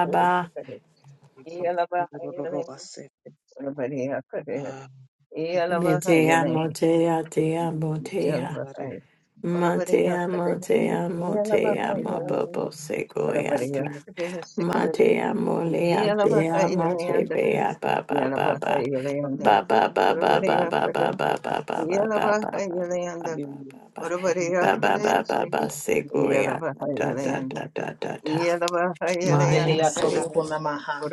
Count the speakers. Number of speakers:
three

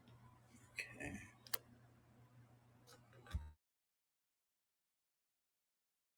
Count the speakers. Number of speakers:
zero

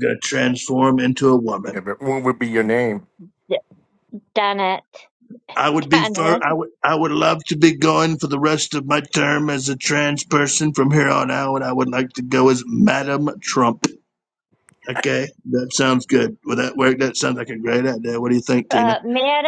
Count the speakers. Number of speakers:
three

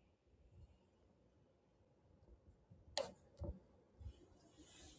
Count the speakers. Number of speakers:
zero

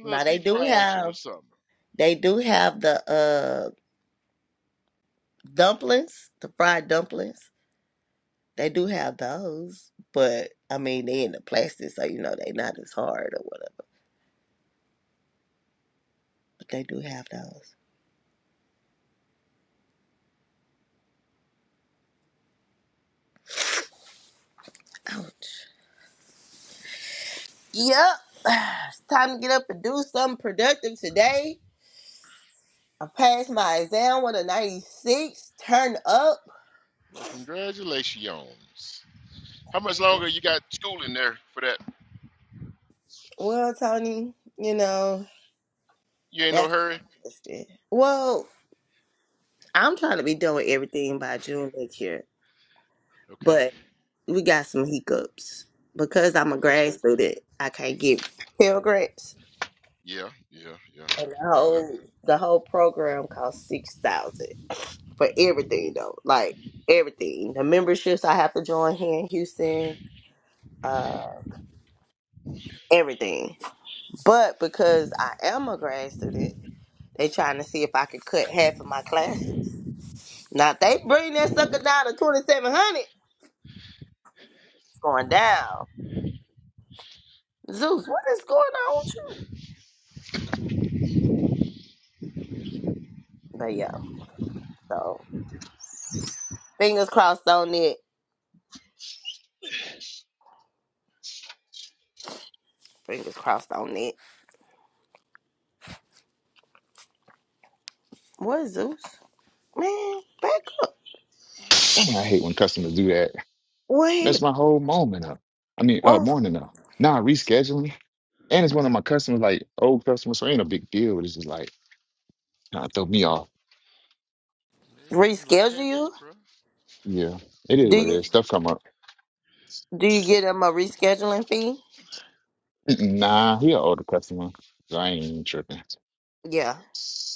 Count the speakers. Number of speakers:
three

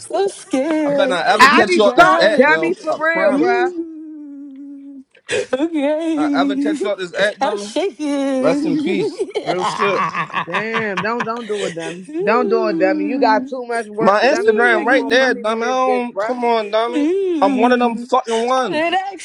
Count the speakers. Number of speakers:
three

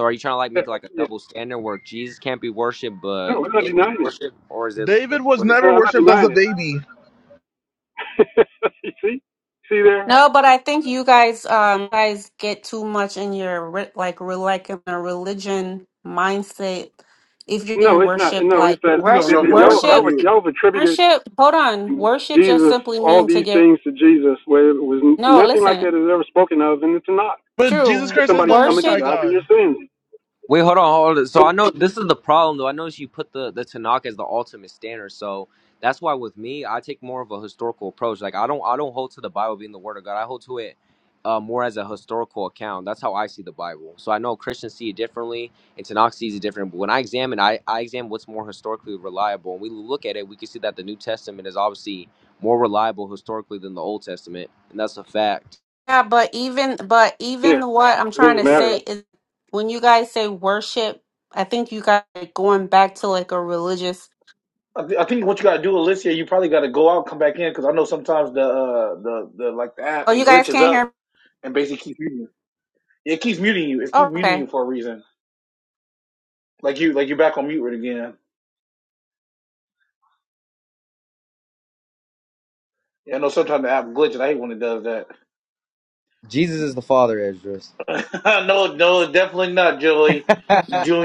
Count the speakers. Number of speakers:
five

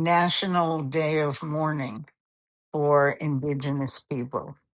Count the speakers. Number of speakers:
one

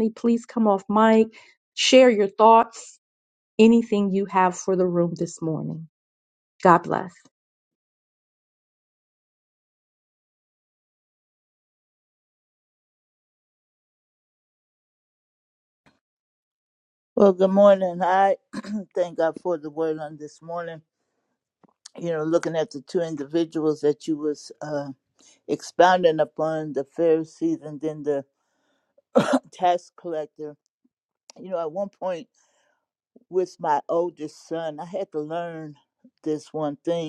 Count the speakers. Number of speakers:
two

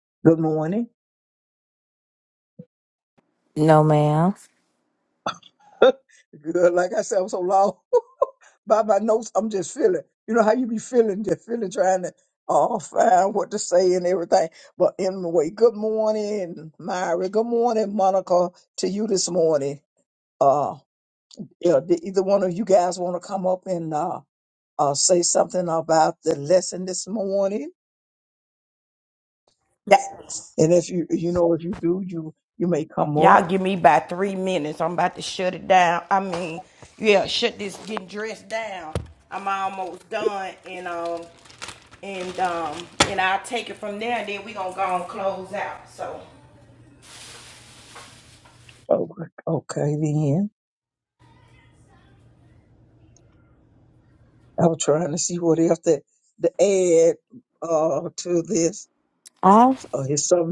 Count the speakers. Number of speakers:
three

